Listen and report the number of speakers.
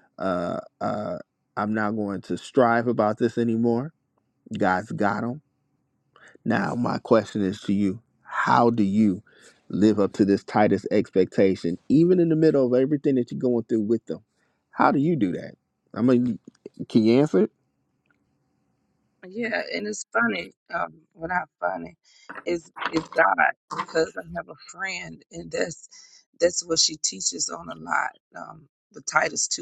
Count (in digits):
2